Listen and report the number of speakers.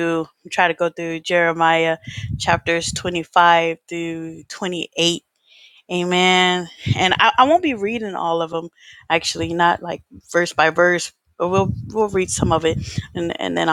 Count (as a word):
one